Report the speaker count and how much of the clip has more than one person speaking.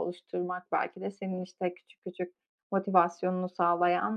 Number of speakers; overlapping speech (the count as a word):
one, no overlap